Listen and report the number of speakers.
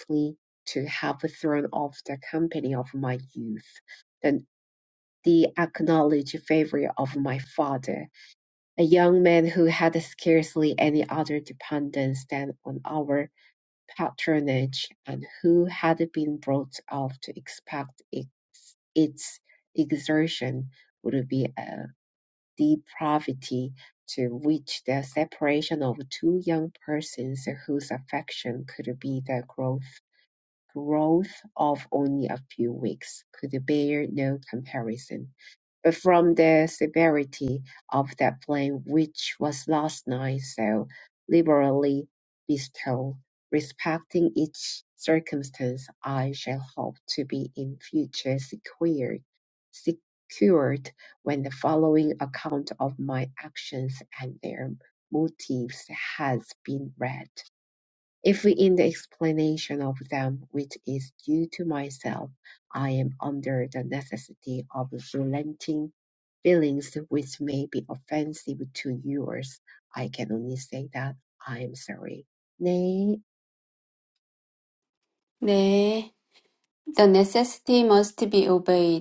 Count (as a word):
two